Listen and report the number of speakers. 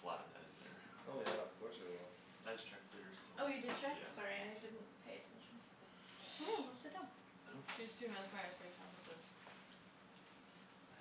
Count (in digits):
4